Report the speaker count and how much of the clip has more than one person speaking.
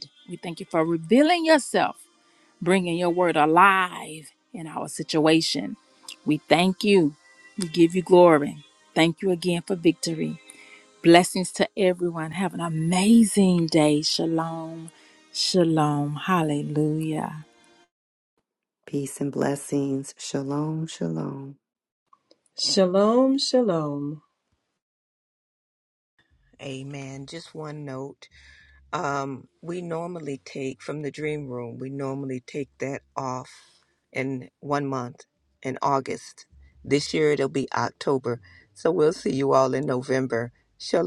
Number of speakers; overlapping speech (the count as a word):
four, no overlap